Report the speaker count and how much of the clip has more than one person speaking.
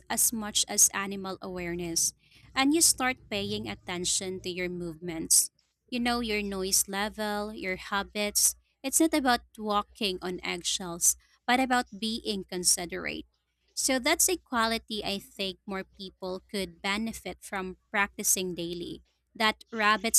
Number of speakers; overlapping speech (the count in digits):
1, no overlap